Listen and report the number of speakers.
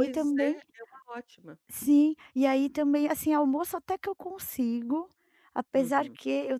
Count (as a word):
two